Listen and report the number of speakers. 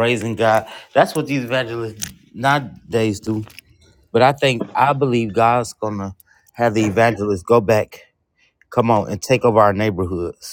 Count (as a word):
one